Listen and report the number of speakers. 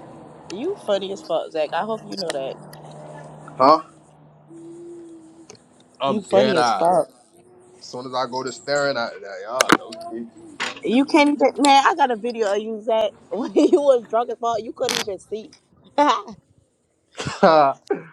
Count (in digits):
2